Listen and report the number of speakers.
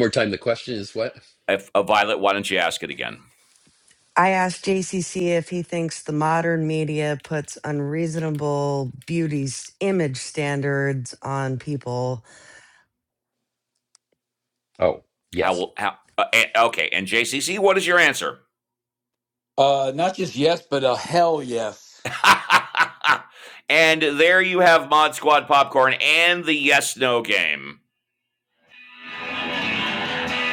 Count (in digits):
4